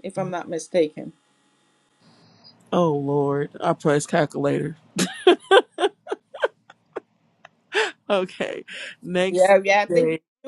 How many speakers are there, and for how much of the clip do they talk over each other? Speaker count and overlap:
two, about 3%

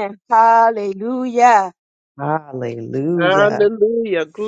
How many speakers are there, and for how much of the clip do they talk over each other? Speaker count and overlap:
three, about 2%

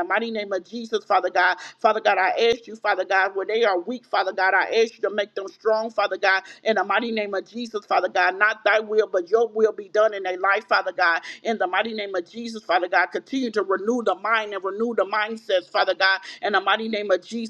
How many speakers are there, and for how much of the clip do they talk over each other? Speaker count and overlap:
one, no overlap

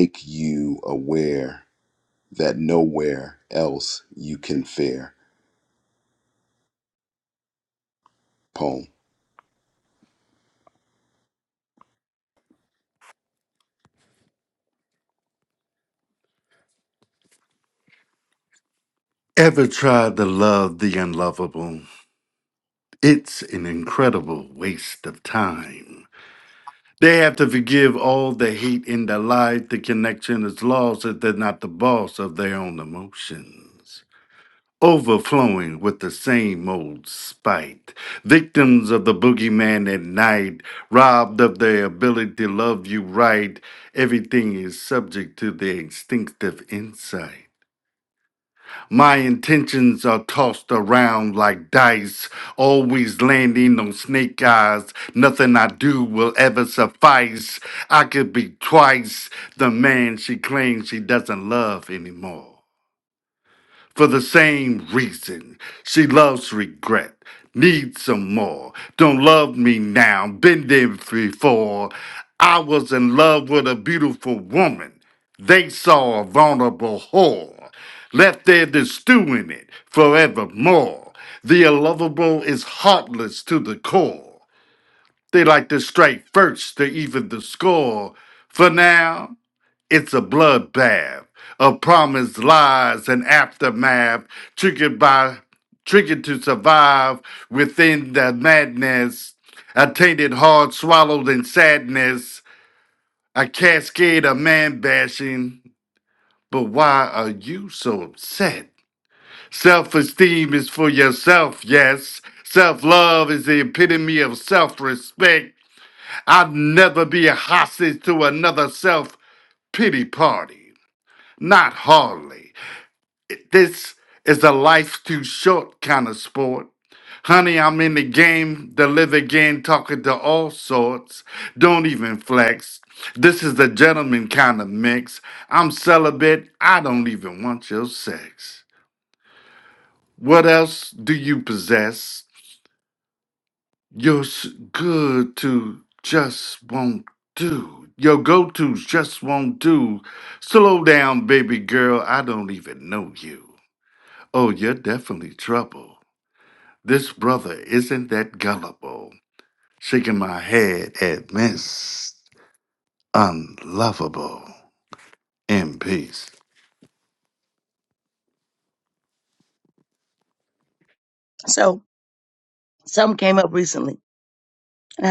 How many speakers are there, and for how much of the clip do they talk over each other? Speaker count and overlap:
three, no overlap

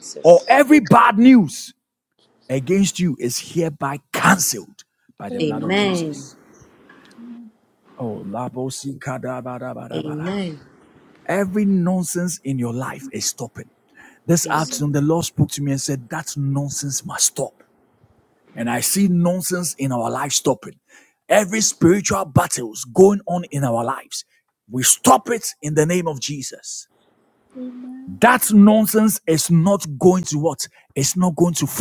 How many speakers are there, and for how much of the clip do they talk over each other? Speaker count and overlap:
three, about 6%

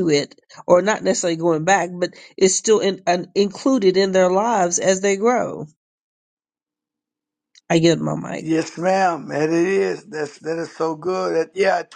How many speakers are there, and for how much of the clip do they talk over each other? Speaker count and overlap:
two, under 1%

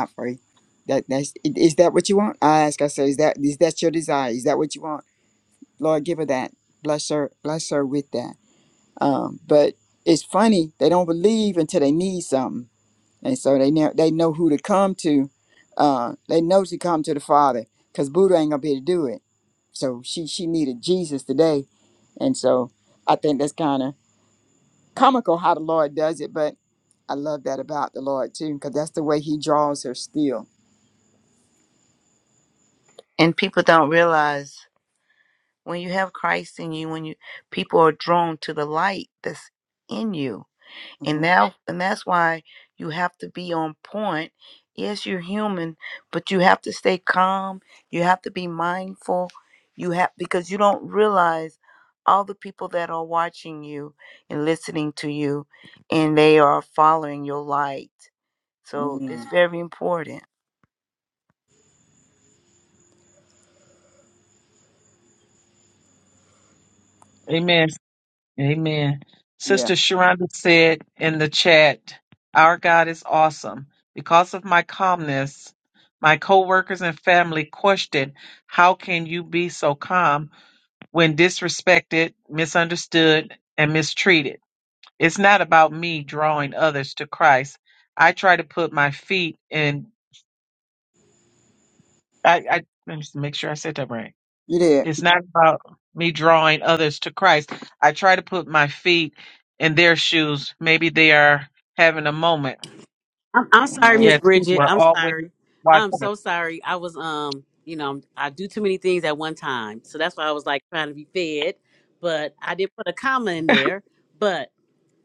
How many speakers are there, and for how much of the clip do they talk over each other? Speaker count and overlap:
four, about 3%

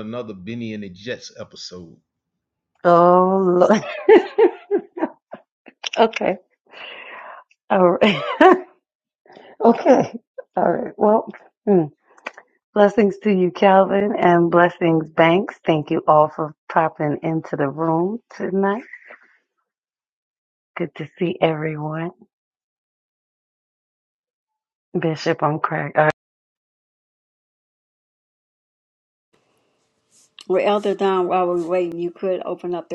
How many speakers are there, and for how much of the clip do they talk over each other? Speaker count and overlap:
three, no overlap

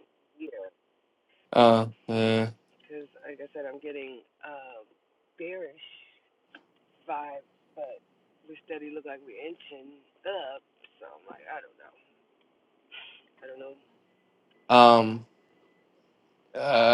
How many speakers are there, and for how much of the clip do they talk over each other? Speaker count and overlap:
two, no overlap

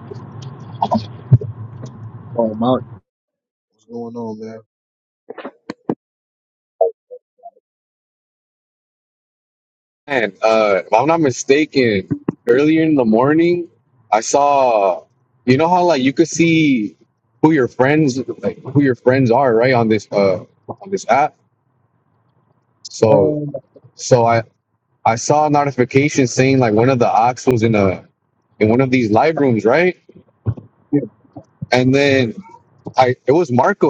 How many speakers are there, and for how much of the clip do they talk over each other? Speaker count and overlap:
two, about 1%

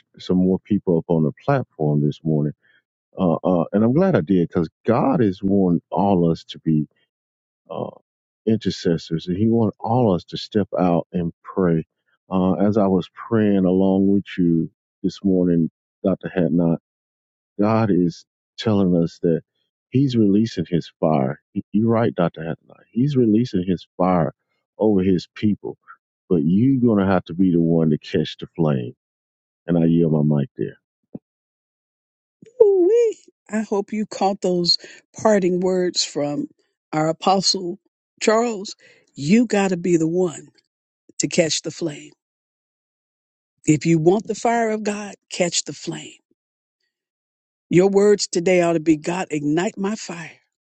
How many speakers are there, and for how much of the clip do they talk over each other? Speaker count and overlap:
two, no overlap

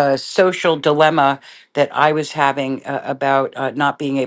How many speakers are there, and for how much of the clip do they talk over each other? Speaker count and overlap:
one, no overlap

